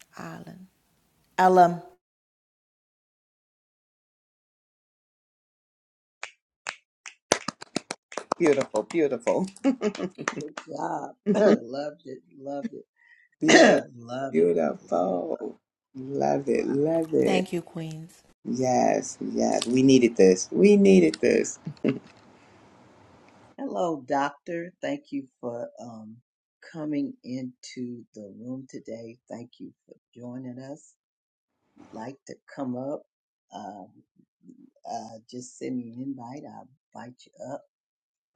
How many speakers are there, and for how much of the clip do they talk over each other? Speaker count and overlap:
three, about 3%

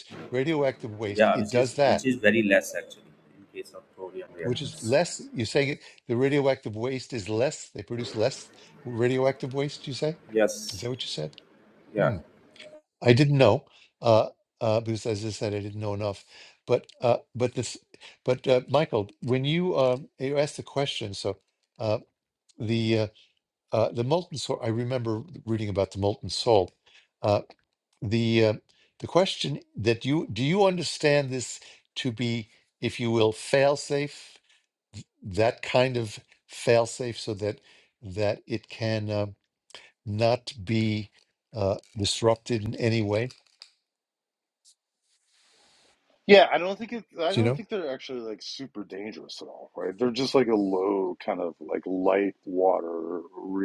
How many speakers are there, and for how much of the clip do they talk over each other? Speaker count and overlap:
three, about 3%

